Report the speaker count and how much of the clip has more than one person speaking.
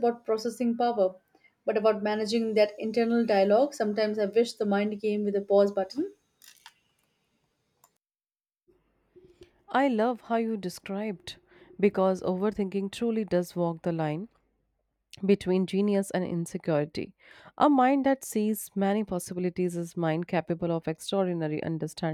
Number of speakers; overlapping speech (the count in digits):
2, no overlap